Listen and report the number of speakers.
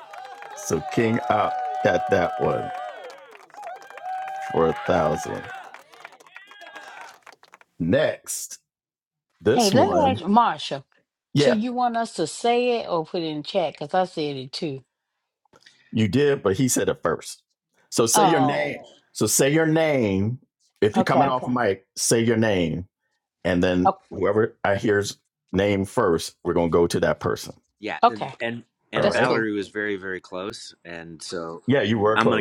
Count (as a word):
three